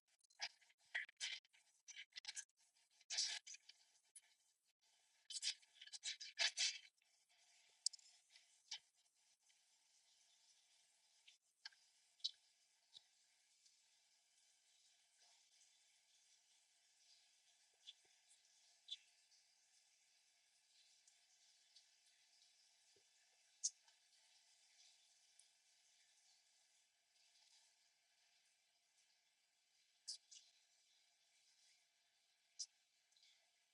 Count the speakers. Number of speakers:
zero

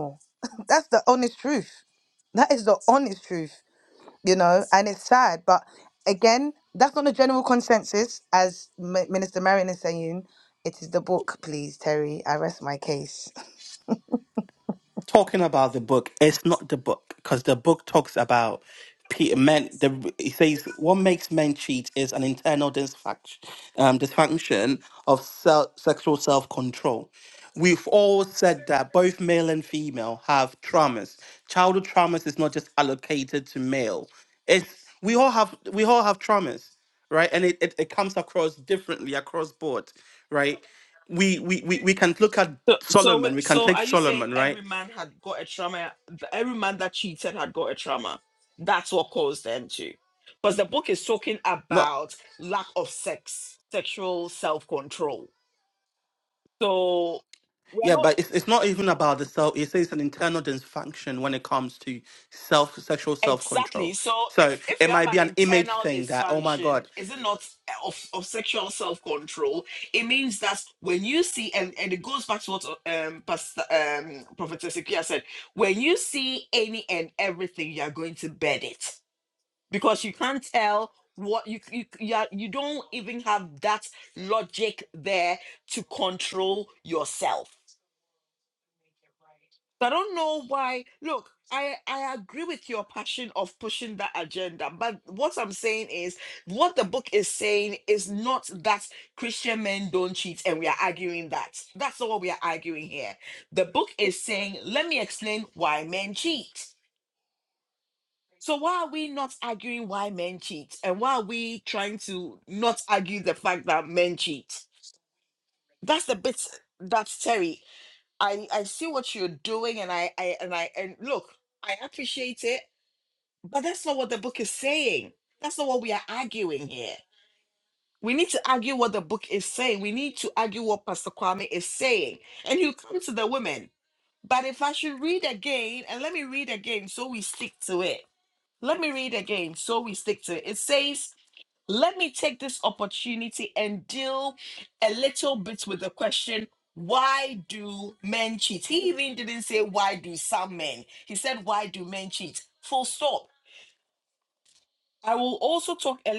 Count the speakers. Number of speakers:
three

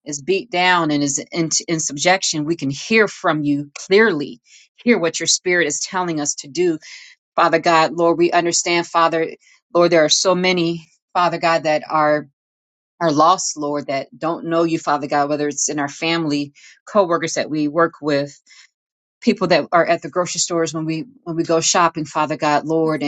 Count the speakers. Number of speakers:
one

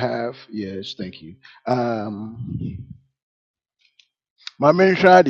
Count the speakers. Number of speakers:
one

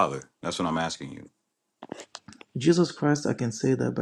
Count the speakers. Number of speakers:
two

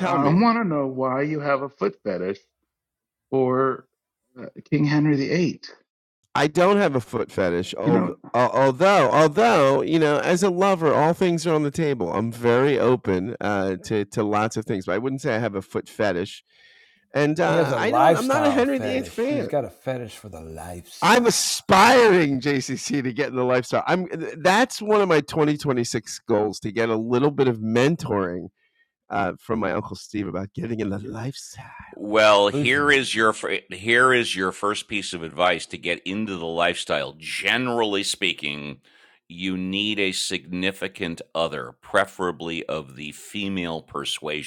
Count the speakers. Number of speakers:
four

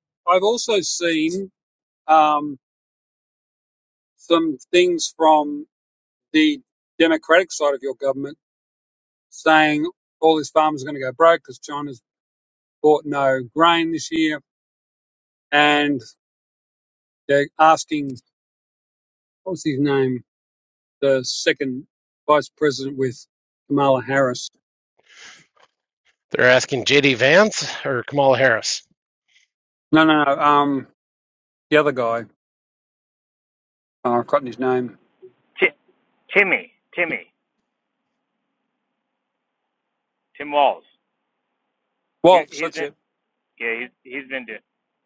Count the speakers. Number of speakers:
three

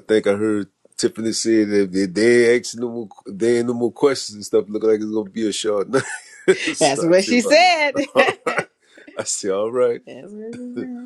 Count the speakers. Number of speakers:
two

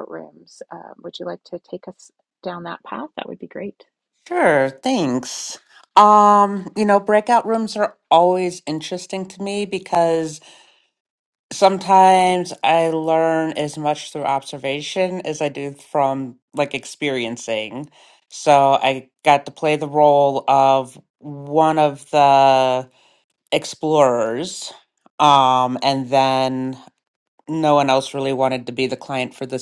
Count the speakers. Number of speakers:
two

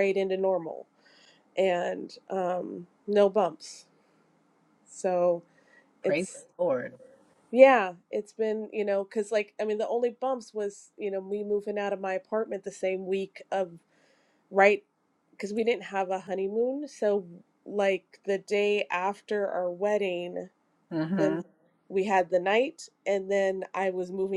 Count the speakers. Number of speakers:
two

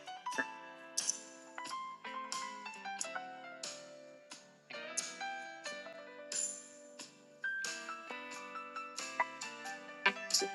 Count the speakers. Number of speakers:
zero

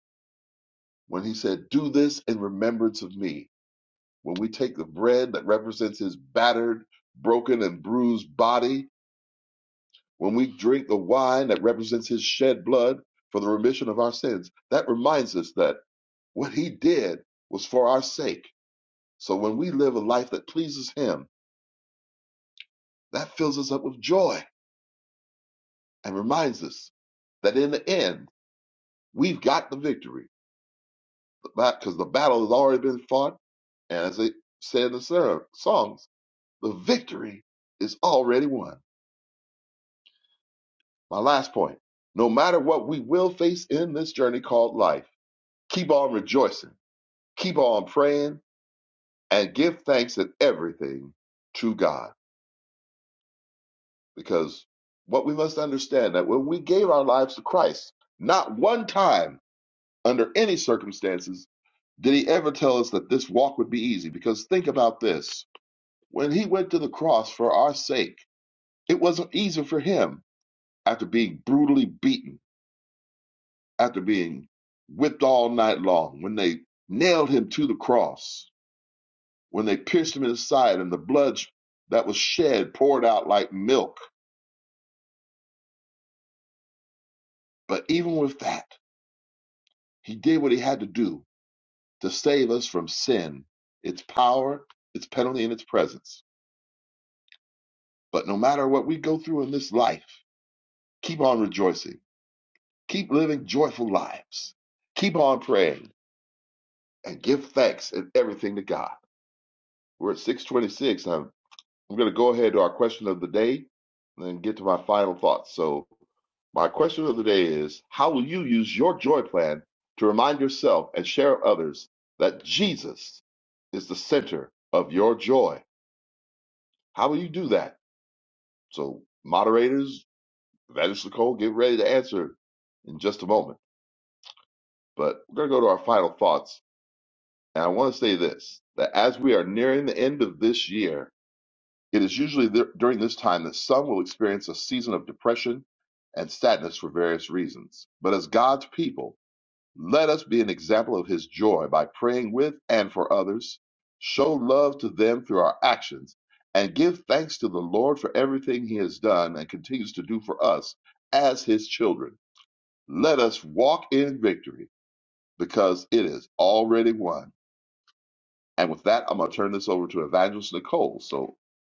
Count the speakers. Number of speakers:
one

